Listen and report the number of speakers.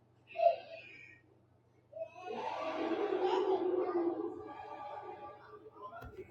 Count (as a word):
zero